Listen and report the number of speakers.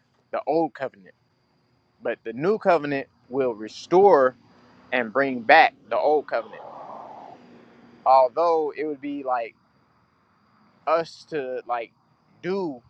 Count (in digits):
1